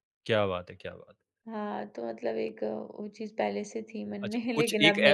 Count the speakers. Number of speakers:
2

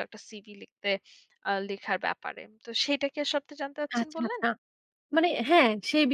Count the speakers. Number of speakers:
2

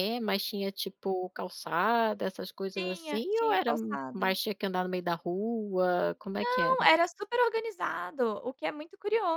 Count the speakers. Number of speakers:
2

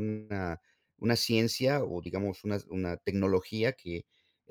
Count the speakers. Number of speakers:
1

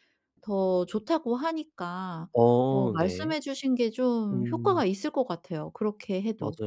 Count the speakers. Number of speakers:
2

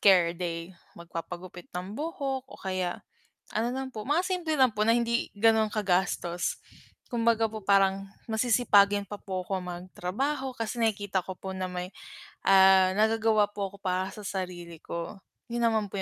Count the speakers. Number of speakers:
1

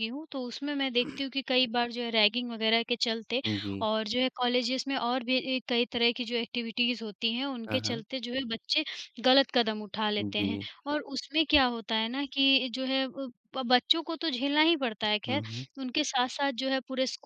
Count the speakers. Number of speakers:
2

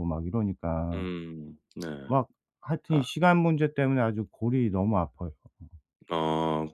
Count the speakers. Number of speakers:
2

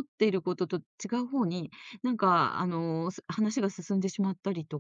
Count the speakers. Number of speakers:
1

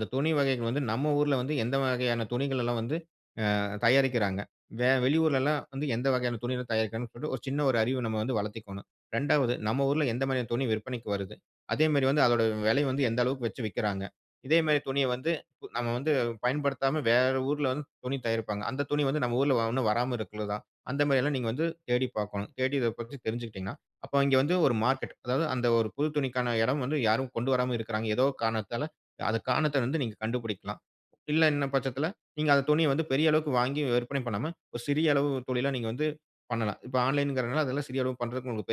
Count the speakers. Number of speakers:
1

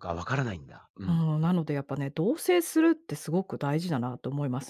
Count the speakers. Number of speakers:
2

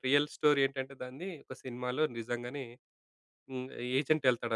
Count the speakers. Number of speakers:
1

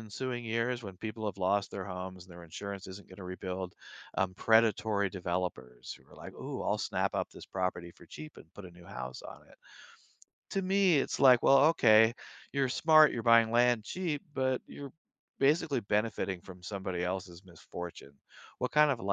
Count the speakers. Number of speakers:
1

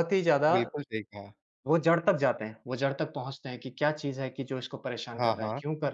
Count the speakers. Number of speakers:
2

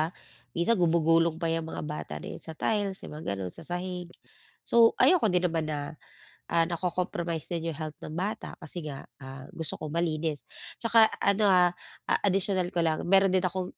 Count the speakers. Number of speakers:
1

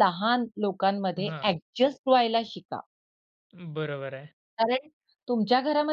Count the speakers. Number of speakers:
2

